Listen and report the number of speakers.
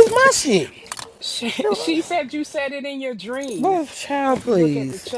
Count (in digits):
2